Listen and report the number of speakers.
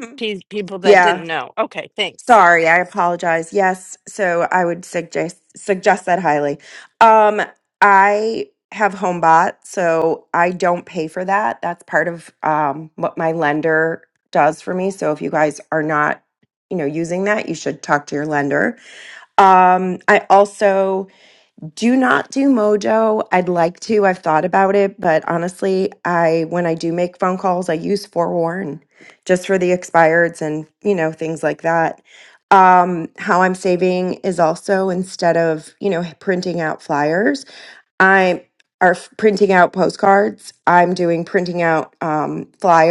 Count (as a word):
two